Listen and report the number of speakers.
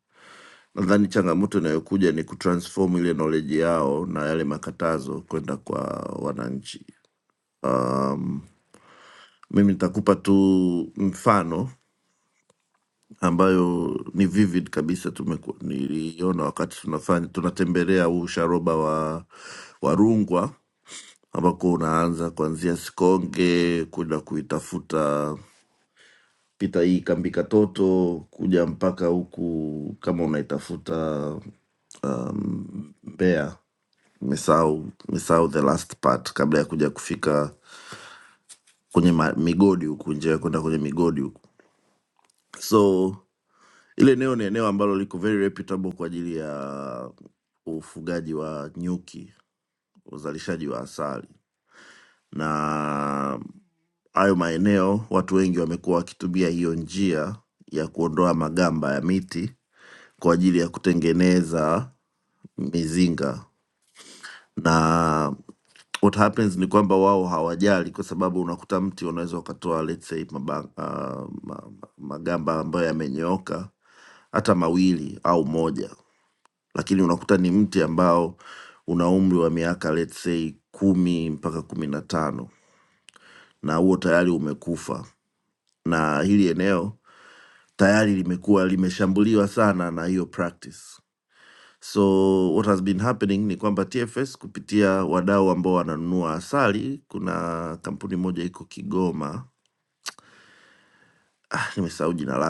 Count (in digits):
1